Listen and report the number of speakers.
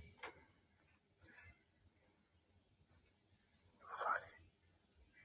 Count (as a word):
zero